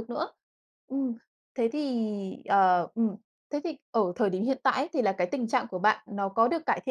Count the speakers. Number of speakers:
one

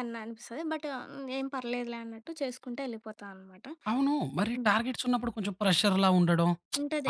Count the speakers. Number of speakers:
two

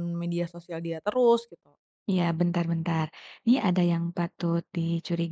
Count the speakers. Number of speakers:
two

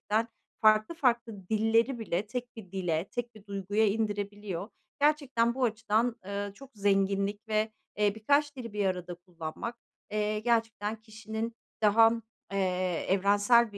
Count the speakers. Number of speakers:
one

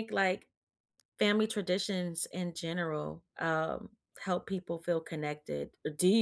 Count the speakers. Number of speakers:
one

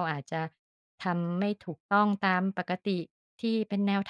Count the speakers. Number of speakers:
one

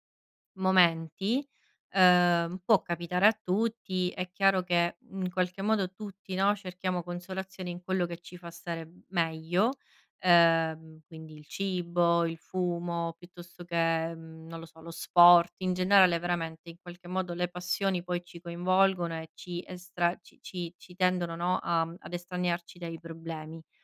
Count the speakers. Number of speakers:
one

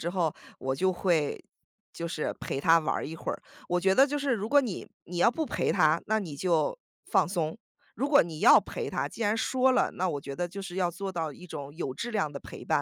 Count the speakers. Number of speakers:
one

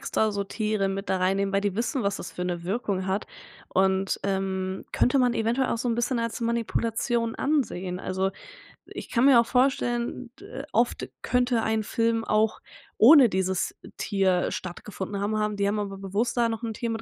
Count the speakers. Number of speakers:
one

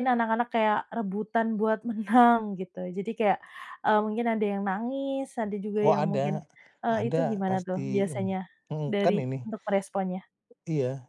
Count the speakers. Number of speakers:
two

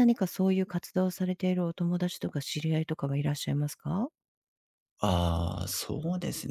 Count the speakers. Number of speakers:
two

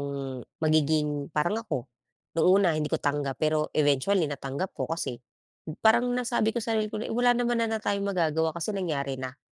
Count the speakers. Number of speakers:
one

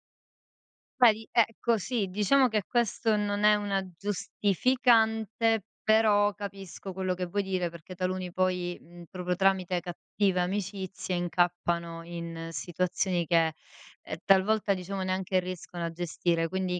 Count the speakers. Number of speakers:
one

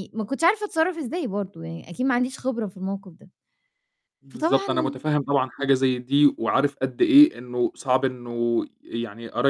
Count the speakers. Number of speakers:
two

